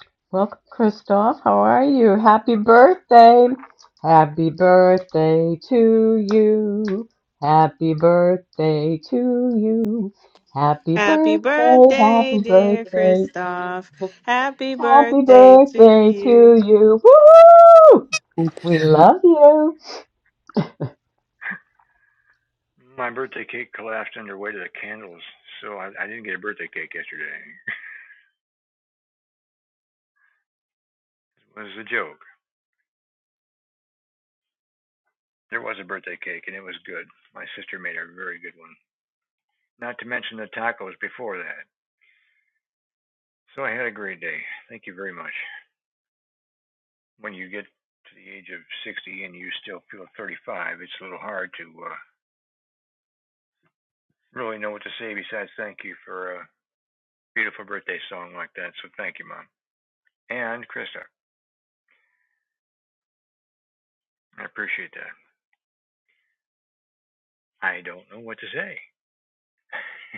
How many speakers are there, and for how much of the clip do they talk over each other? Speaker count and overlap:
3, about 5%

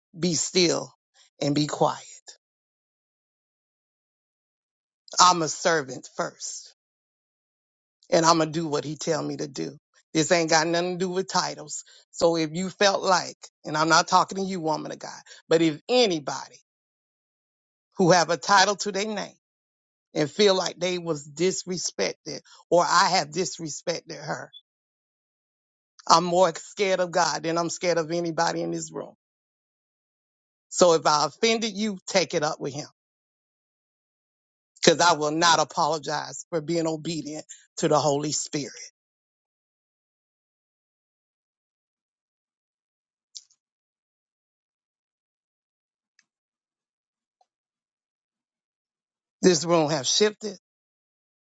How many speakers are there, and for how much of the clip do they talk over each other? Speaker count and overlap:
1, no overlap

